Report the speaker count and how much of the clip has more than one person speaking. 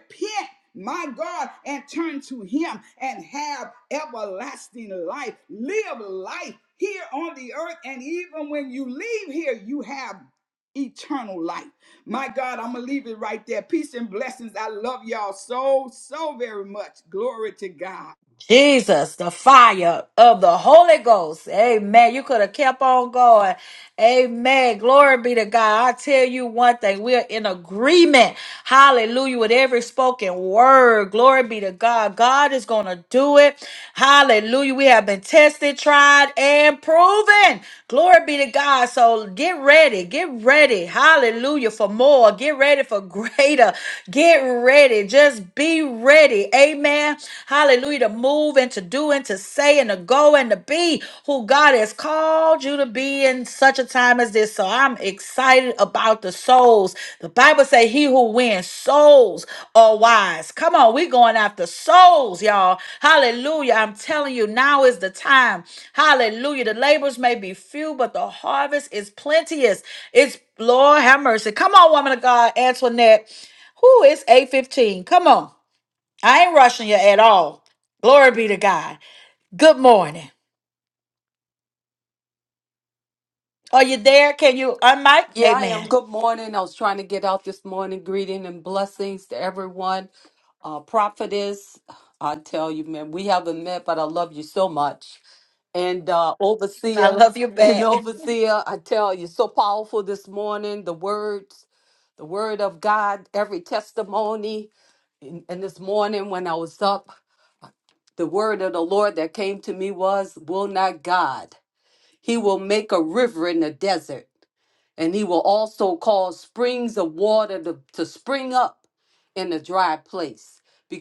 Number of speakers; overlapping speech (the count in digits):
3, about 1%